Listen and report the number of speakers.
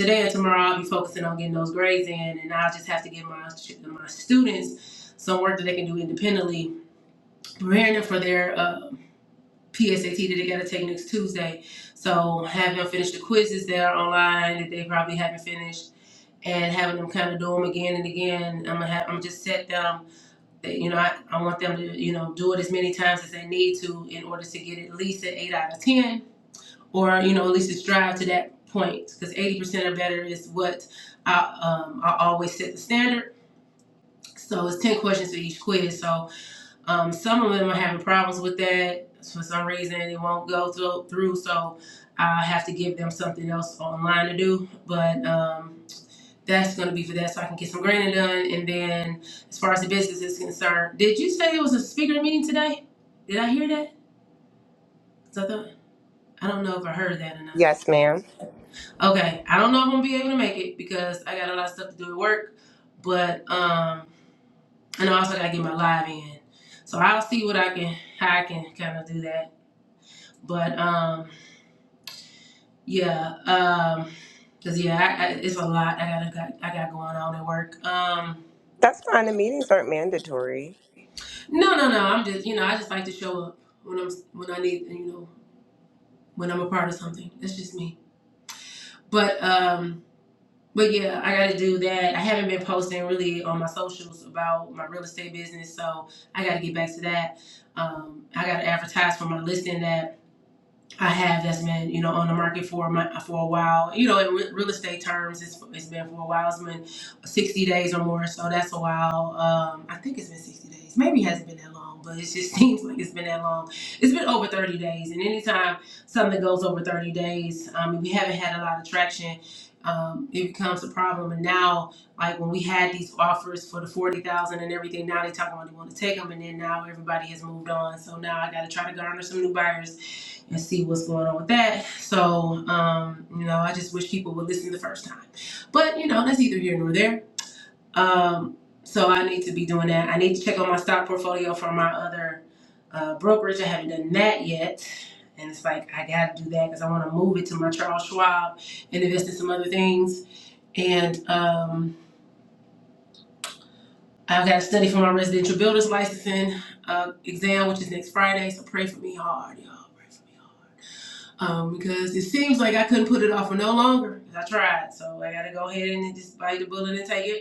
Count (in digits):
2